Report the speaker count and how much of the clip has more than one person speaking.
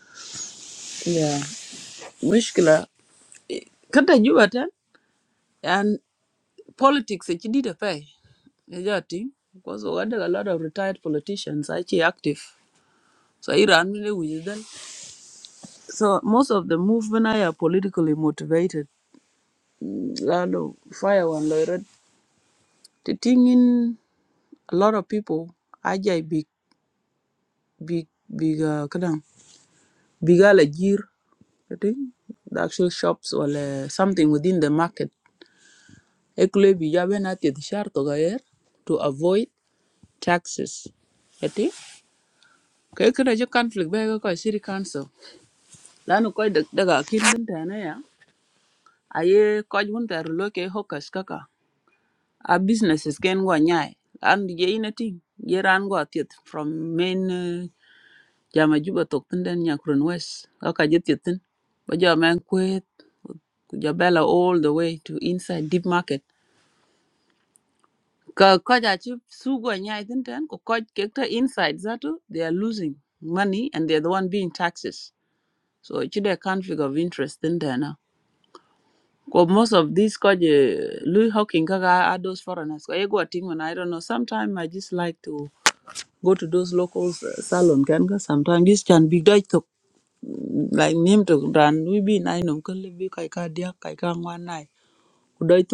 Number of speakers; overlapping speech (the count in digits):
1, no overlap